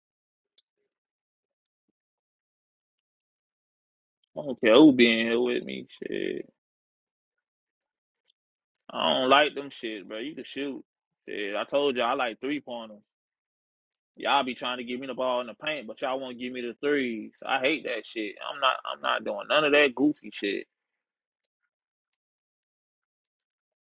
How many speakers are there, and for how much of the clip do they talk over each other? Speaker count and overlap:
1, no overlap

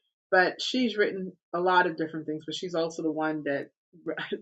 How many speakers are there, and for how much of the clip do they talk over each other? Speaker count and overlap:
1, no overlap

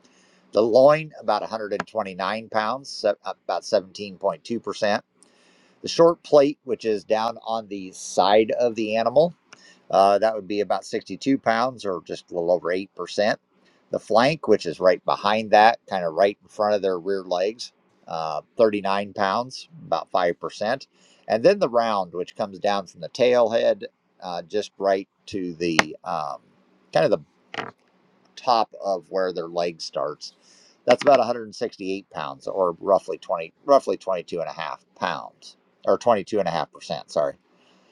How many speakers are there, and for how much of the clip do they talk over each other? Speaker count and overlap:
1, no overlap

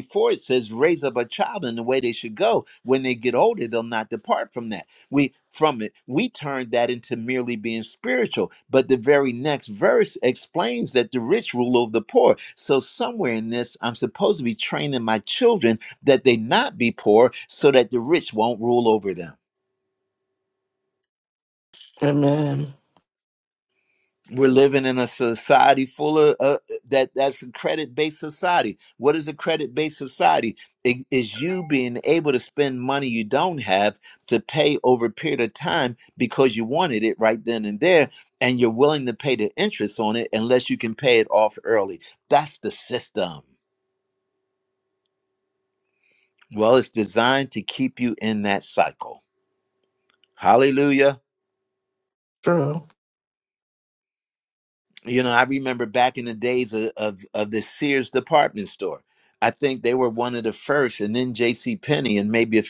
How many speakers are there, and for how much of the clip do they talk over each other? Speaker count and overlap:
2, no overlap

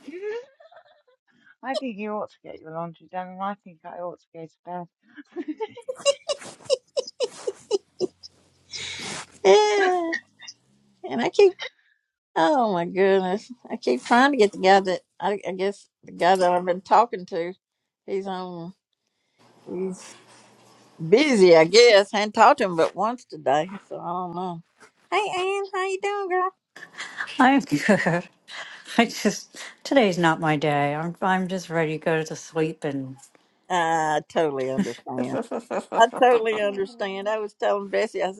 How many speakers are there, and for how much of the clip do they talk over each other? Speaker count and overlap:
3, about 2%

